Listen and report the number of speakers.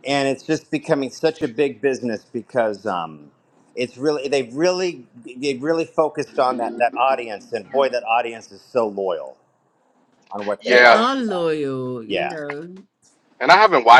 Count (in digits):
3